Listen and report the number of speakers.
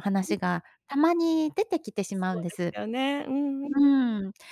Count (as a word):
two